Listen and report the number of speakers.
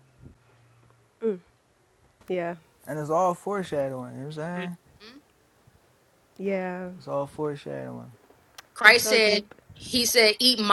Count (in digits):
3